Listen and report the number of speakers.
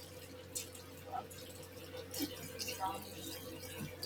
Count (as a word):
zero